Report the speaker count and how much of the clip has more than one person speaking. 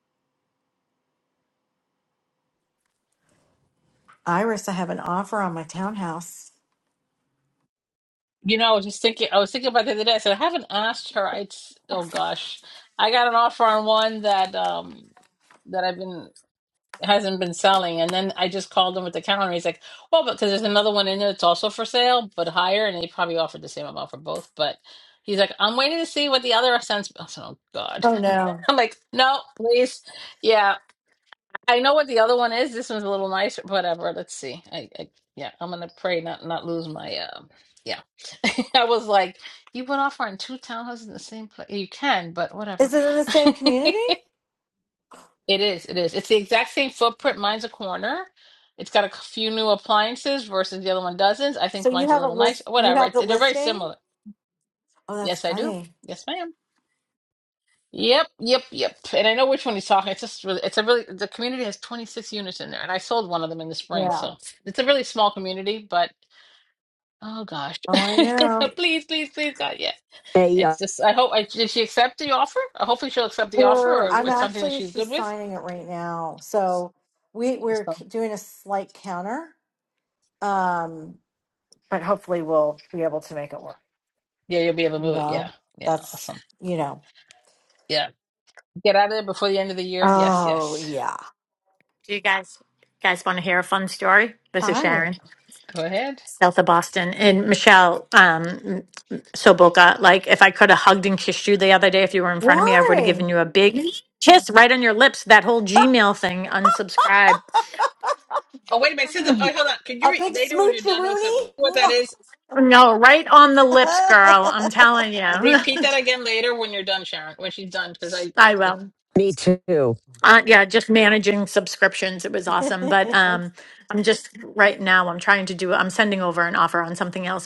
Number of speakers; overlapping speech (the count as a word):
four, about 8%